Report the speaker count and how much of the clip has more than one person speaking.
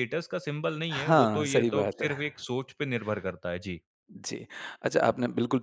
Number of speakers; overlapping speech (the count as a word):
two, about 22%